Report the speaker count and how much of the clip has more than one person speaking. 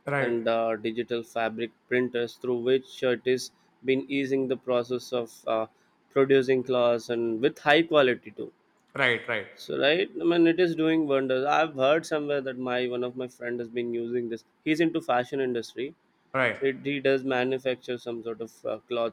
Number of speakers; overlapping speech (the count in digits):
2, about 1%